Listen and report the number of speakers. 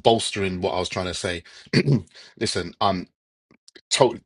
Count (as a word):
one